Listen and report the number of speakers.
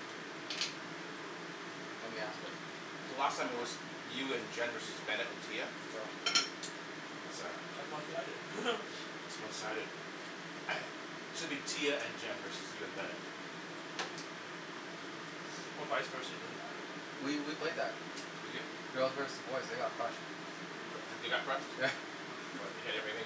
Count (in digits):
3